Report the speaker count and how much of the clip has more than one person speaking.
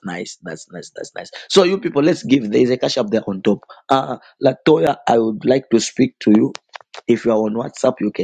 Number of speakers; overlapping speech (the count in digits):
1, no overlap